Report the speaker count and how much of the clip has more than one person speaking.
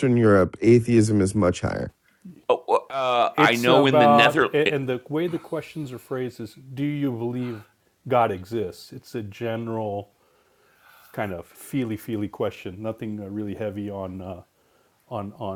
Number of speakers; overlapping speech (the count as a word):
three, about 8%